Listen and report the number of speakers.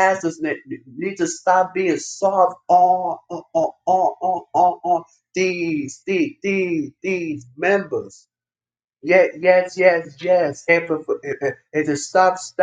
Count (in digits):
1